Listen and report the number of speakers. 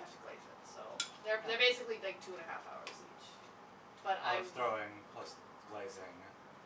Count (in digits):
2